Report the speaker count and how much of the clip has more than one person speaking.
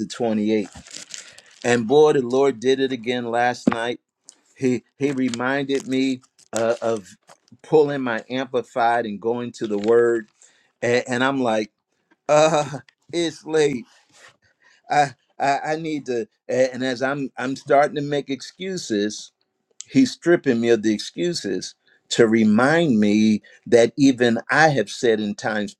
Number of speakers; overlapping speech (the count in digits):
1, no overlap